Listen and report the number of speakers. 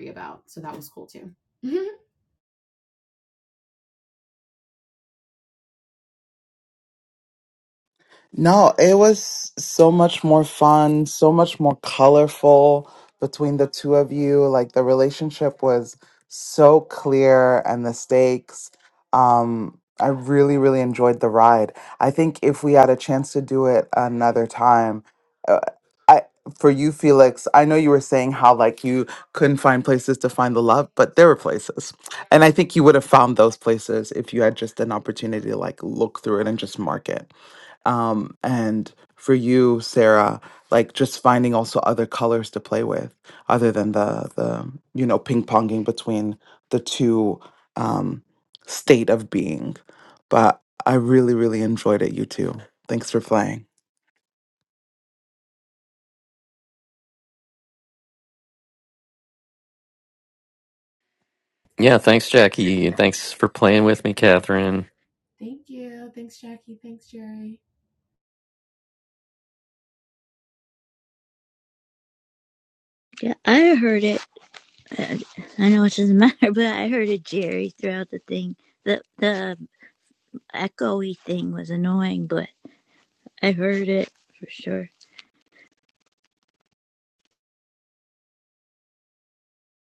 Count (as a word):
four